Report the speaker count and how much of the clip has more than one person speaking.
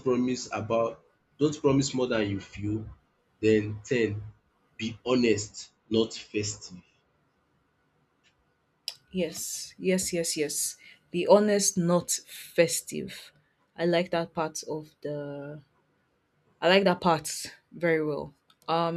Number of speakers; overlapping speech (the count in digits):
2, no overlap